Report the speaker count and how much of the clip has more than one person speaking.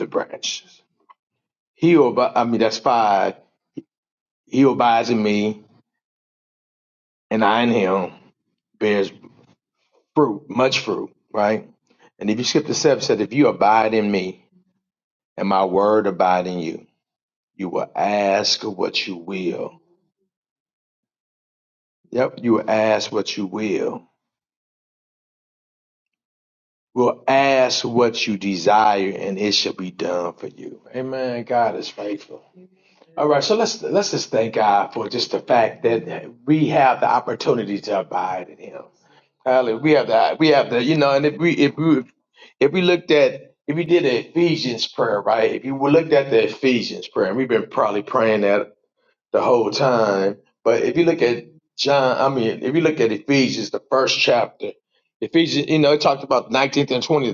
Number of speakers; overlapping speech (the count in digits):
1, no overlap